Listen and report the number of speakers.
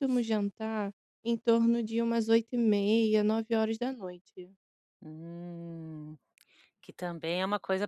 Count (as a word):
two